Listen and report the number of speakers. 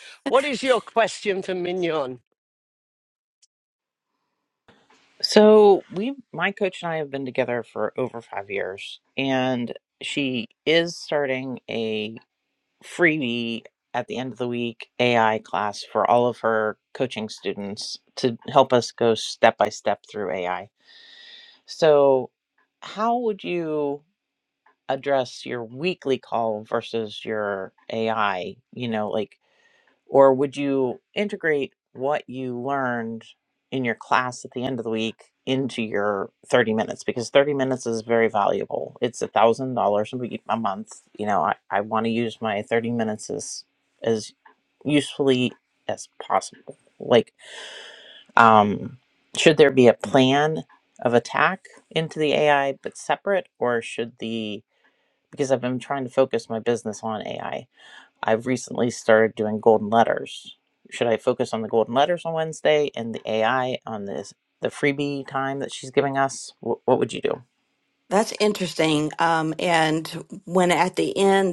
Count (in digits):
3